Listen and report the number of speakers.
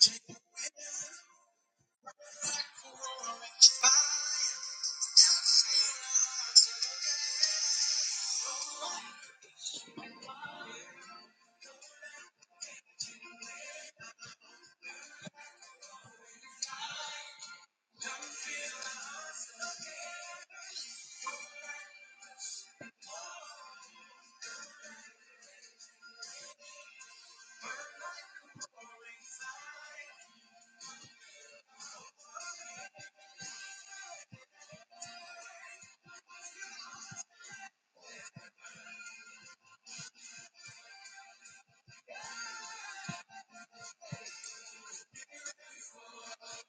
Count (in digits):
0